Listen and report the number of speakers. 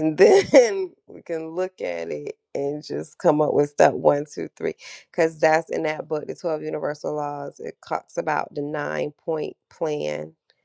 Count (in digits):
1